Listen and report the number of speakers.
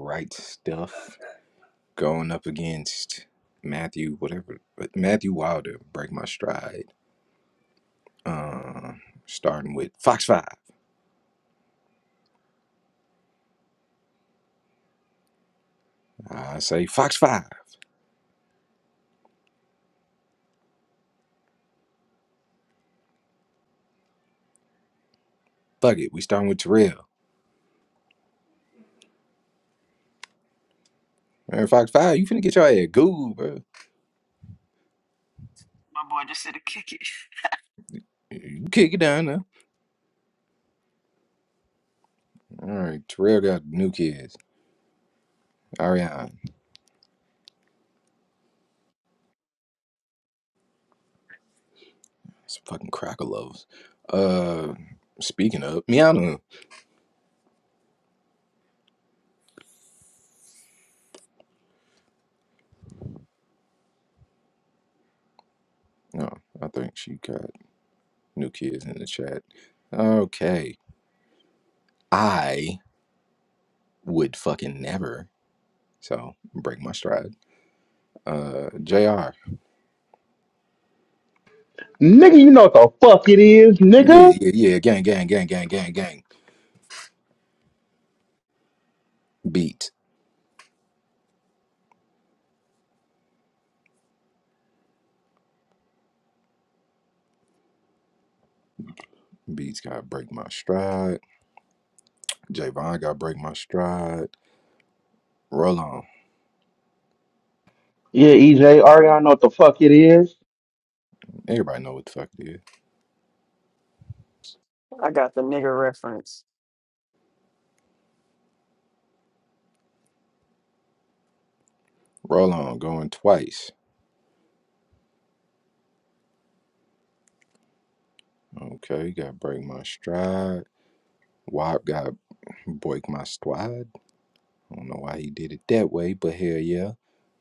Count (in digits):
3